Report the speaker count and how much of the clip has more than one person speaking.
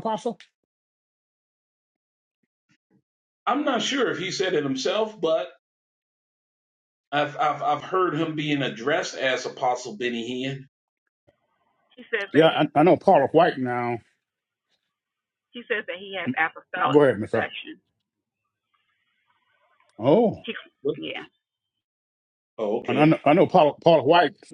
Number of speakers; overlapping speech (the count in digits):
3, about 5%